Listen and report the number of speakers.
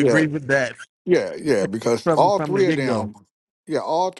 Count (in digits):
2